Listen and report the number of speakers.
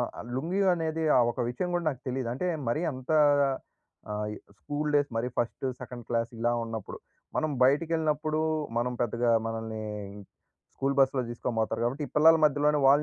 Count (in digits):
1